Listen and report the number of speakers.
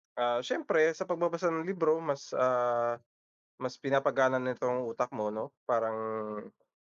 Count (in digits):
1